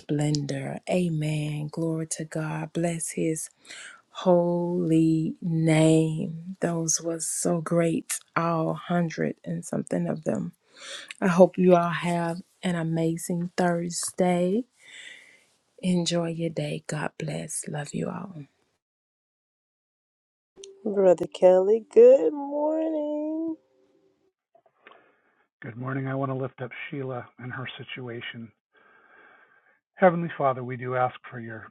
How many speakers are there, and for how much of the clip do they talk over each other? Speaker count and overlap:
3, no overlap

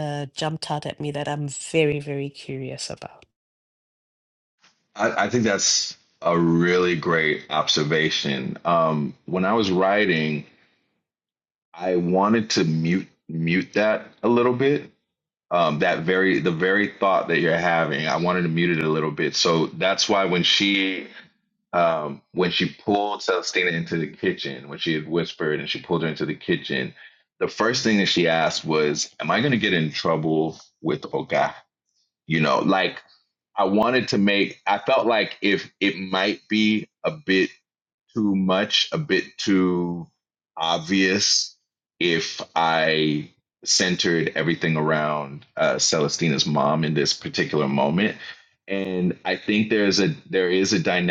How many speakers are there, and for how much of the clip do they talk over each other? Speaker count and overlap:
2, no overlap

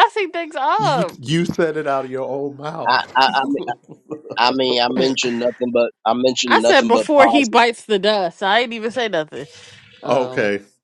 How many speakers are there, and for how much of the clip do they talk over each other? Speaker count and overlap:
3, about 19%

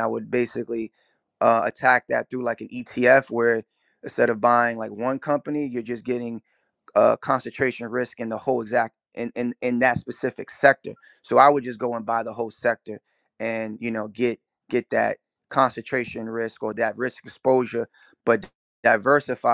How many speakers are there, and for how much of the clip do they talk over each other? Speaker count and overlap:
1, no overlap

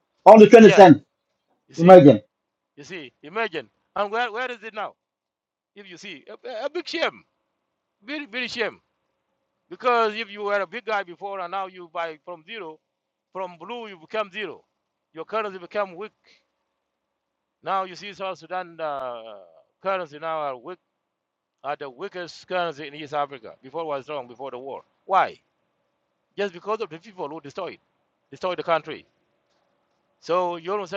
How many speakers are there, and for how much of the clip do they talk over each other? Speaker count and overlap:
2, about 2%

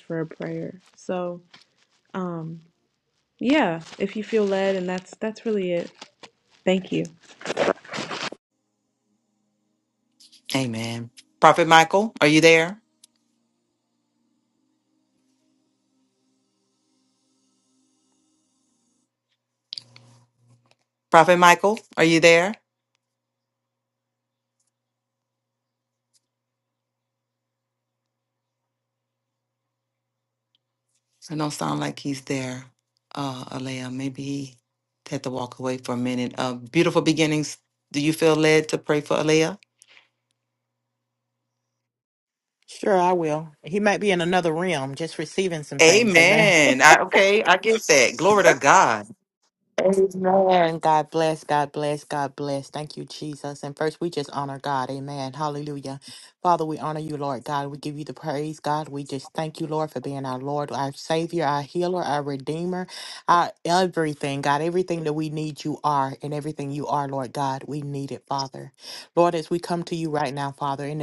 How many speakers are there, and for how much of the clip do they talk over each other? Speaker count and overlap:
3, about 1%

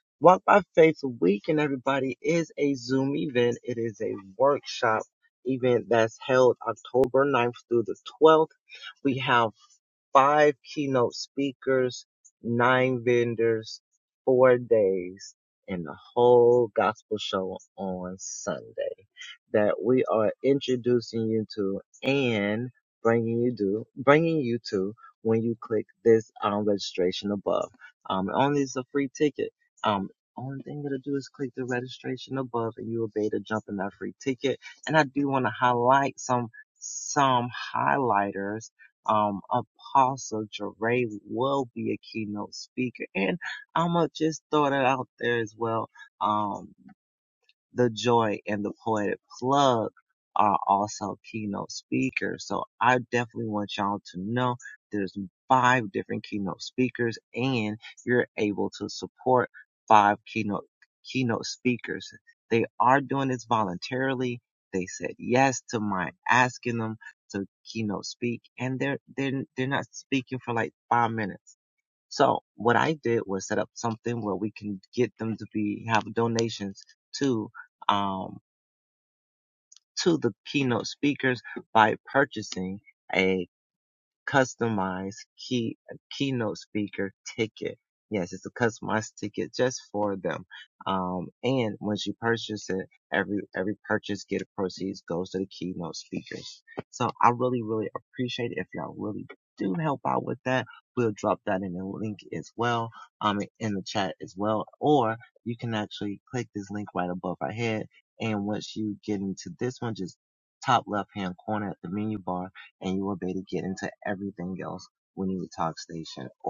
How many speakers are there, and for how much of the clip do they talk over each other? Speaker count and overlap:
1, no overlap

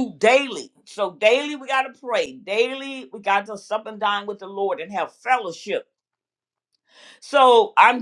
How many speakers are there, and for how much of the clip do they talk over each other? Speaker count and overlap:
1, no overlap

